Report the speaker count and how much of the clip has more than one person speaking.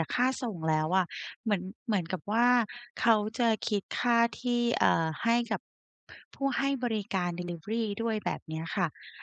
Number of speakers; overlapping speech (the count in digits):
1, no overlap